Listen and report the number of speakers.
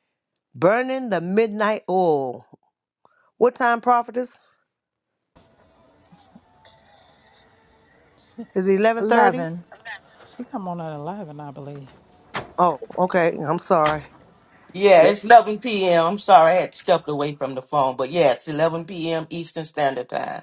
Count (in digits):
3